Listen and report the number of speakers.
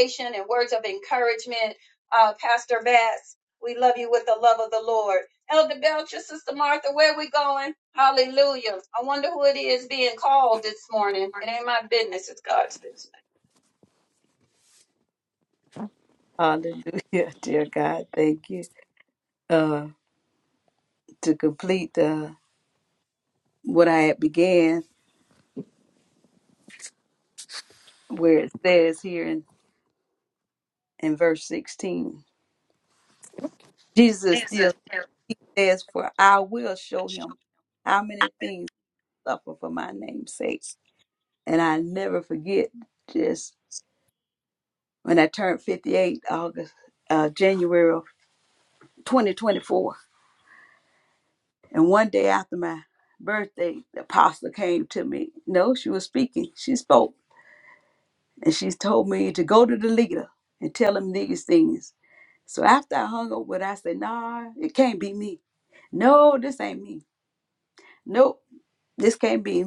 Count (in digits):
2